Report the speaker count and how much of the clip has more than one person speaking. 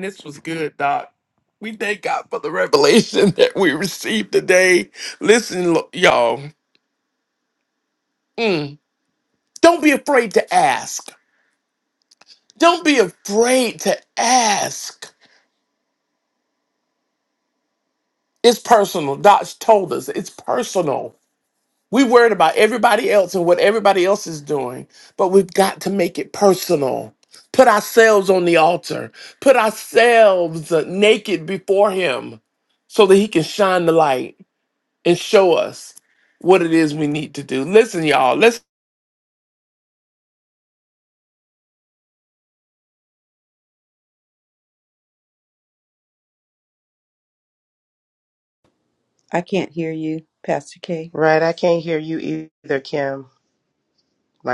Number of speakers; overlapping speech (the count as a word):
three, no overlap